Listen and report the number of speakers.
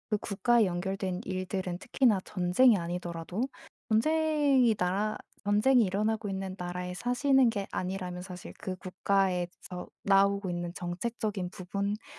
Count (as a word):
one